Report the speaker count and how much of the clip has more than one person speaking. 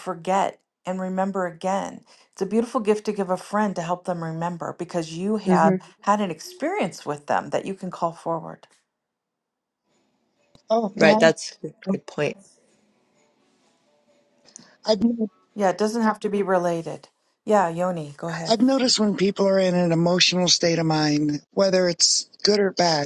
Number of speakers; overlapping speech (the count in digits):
3, about 3%